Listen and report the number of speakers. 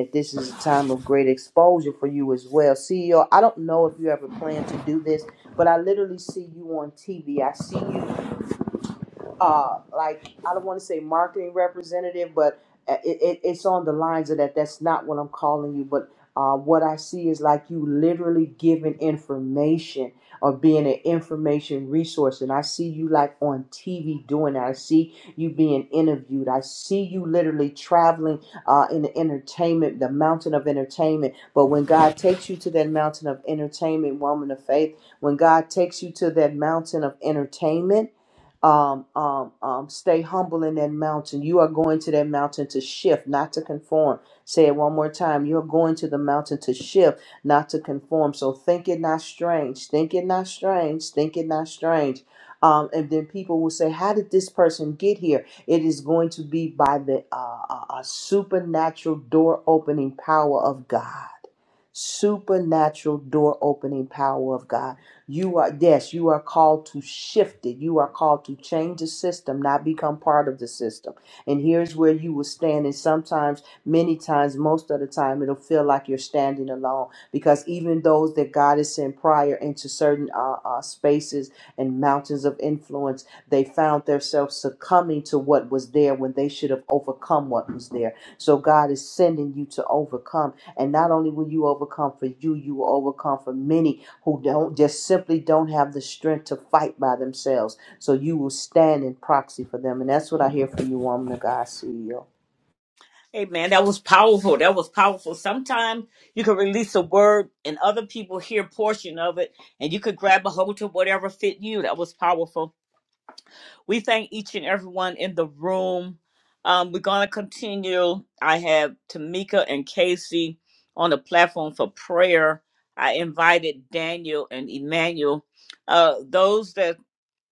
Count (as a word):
two